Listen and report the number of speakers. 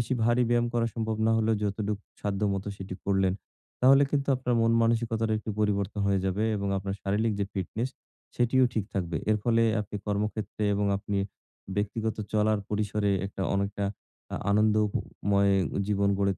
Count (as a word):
one